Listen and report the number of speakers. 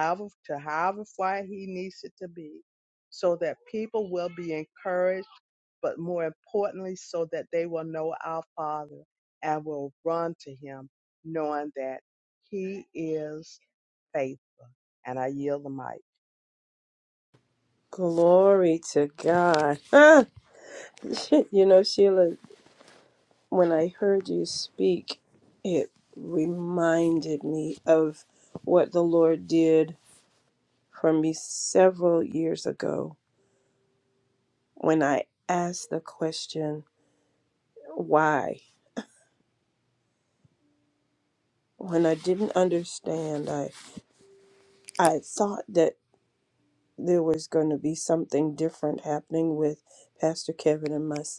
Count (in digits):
2